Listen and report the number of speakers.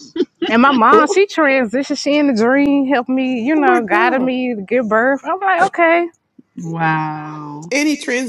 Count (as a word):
three